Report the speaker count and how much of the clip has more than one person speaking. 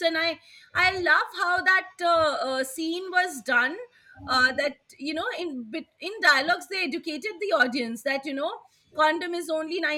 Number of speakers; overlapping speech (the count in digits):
1, no overlap